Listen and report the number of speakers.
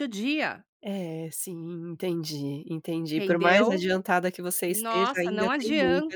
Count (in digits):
2